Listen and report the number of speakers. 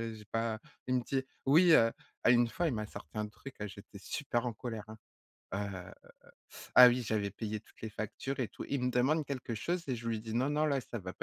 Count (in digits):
1